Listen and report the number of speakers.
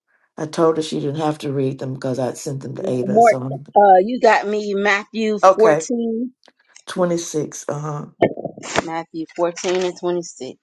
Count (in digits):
2